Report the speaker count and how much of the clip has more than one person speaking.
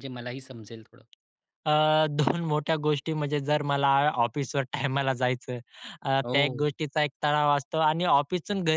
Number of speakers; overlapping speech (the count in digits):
2, about 5%